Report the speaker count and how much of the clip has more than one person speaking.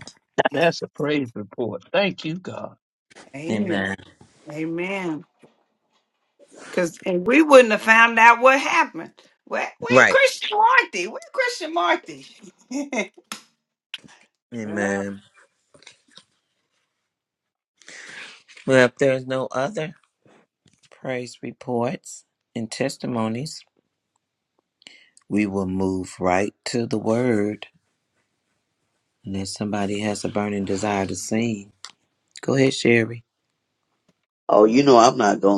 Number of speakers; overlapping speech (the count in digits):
4, about 3%